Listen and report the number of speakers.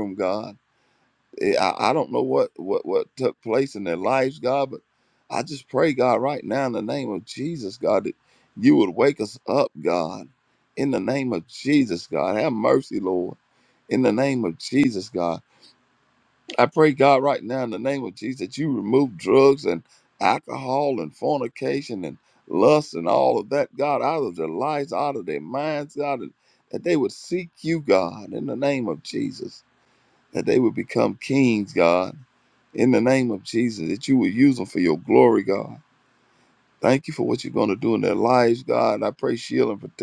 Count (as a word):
one